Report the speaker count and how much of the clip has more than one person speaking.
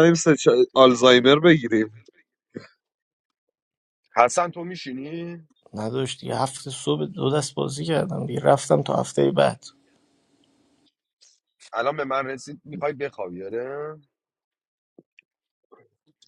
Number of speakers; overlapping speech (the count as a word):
three, about 1%